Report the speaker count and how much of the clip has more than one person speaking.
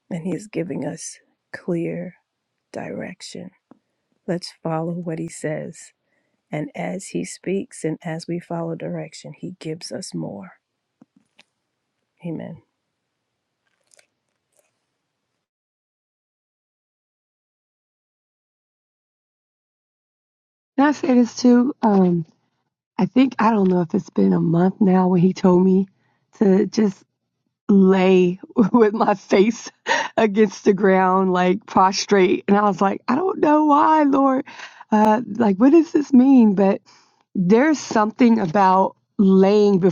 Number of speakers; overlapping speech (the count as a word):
two, no overlap